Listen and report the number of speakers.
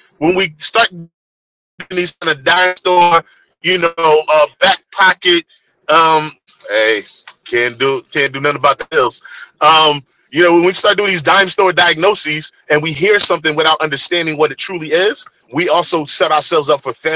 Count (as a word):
one